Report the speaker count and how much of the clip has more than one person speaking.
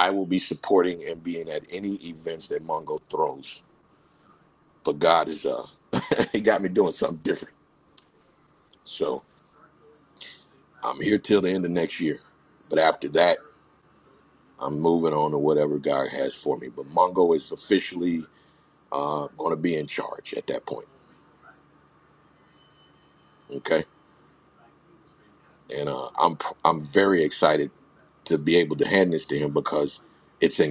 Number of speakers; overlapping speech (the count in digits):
1, no overlap